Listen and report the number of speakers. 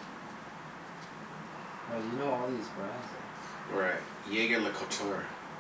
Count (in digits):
2